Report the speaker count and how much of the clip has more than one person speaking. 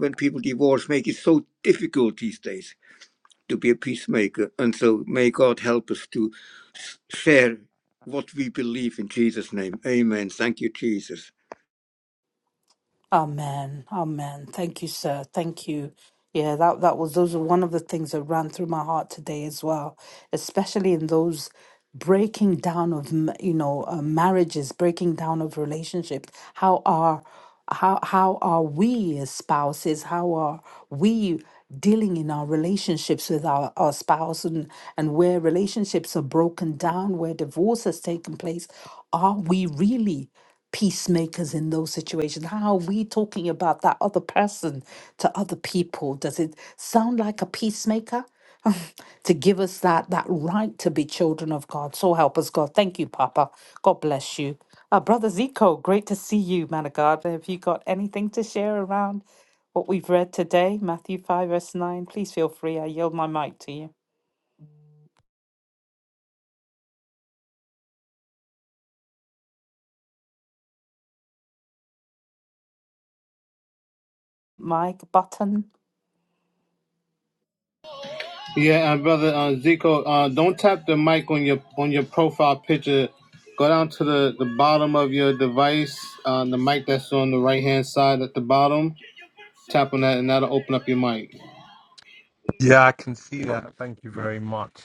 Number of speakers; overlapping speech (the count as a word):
four, no overlap